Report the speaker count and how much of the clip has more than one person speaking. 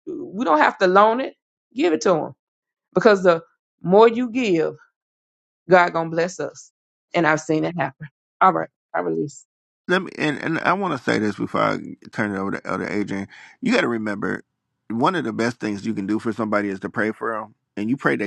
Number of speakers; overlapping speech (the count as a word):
two, no overlap